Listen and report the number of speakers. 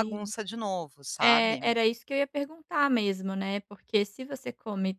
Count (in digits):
2